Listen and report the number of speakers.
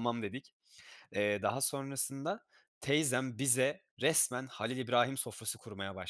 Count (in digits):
1